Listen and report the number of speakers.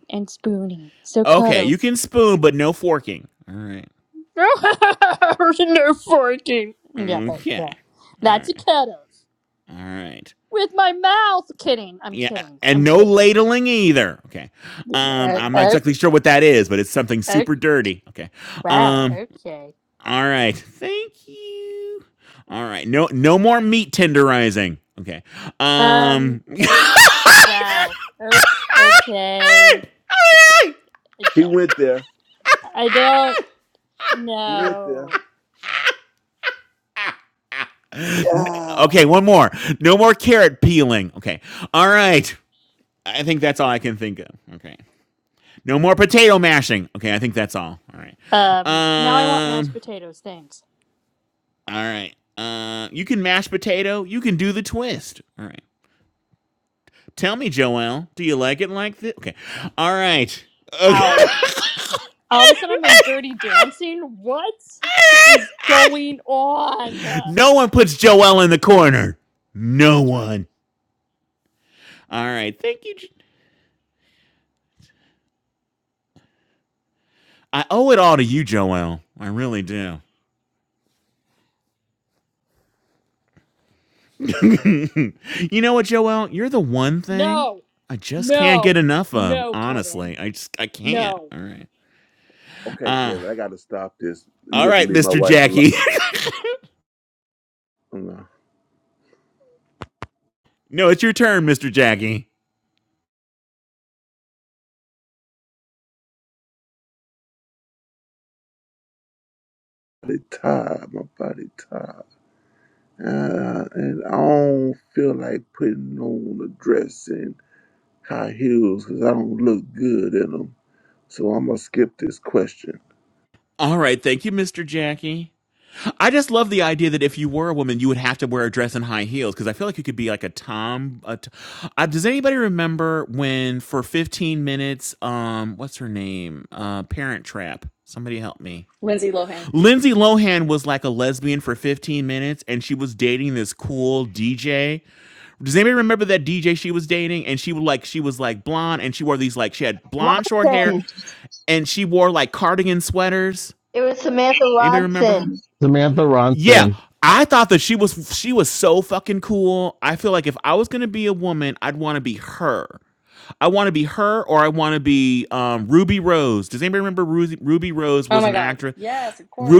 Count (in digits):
6